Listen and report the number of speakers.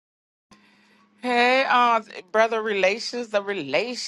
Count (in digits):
1